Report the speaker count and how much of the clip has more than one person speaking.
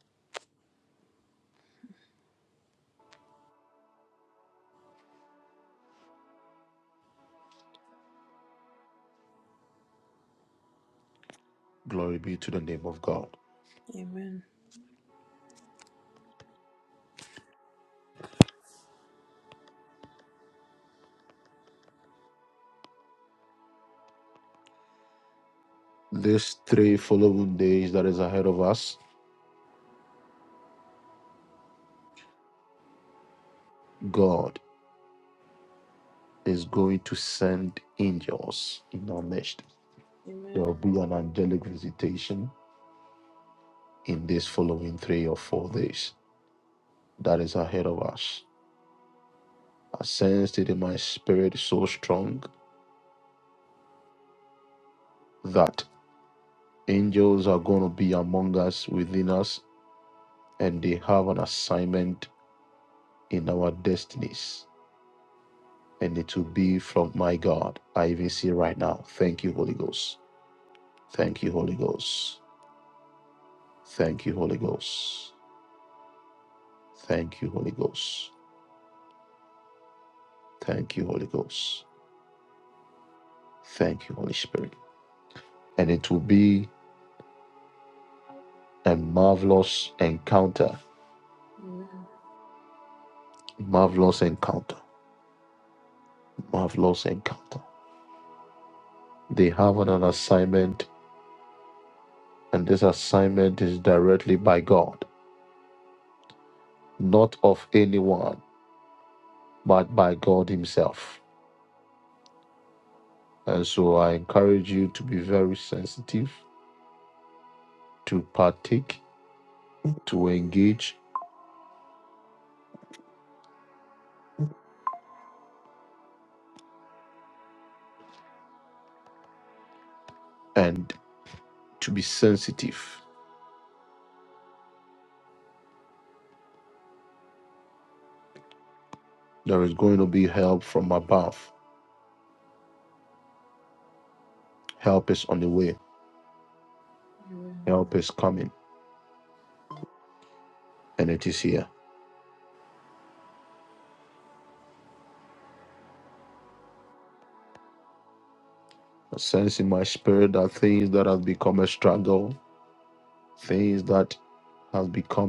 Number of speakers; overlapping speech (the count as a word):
two, under 1%